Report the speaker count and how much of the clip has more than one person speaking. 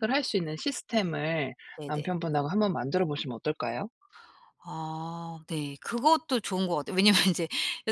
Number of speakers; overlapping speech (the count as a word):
two, about 2%